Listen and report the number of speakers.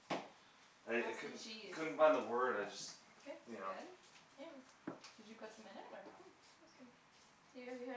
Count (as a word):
three